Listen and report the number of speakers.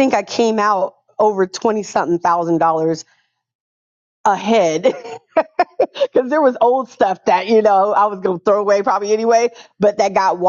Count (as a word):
one